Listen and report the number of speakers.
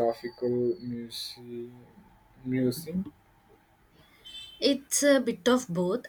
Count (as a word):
two